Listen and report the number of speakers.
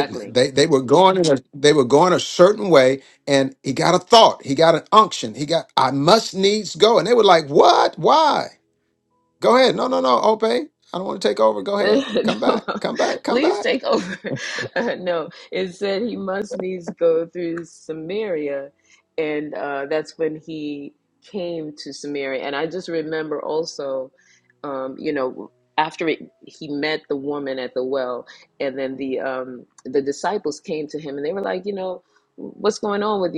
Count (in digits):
2